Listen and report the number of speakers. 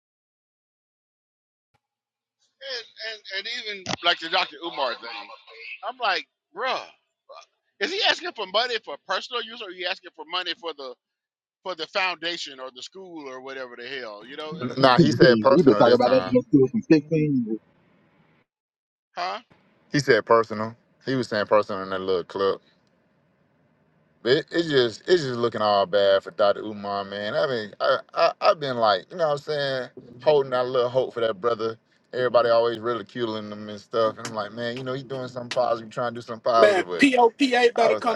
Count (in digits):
4